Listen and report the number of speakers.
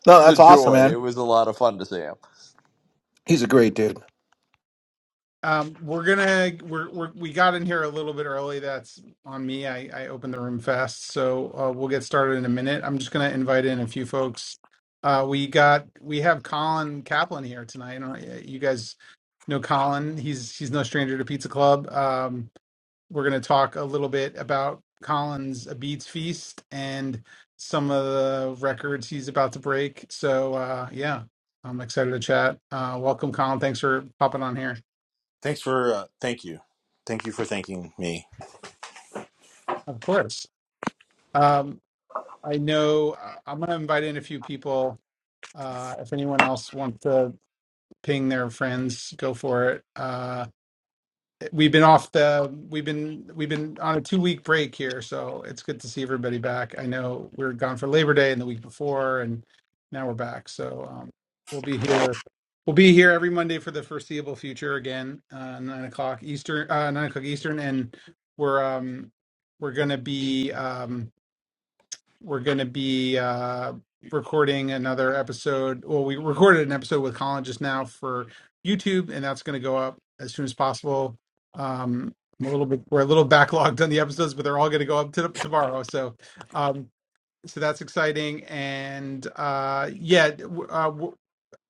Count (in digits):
4